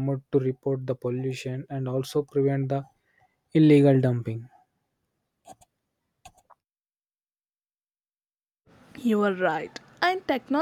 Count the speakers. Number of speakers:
2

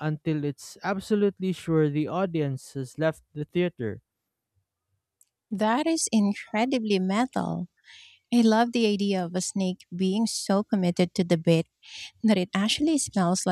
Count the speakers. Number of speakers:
2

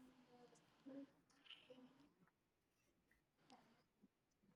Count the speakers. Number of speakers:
0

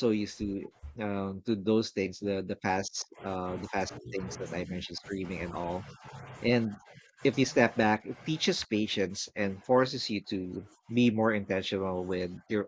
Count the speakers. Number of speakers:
1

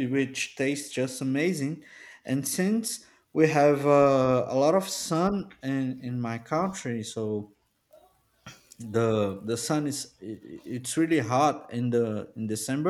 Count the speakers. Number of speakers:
1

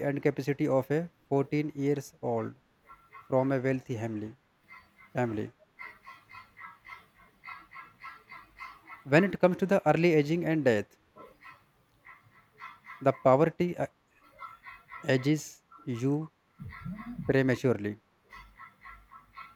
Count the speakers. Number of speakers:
1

